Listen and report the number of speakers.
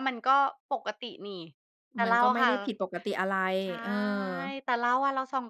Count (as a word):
two